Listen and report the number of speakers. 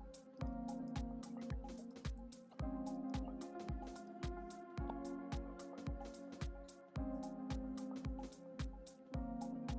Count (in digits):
0